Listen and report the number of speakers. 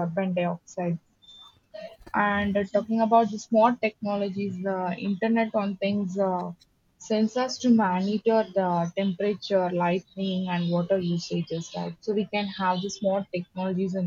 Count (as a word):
one